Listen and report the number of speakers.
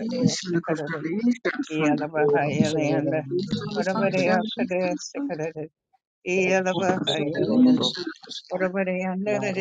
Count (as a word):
three